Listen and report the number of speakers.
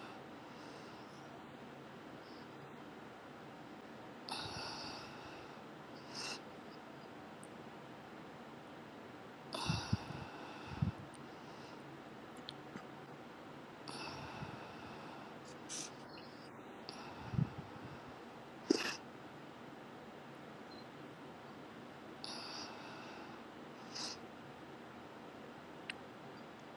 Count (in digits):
0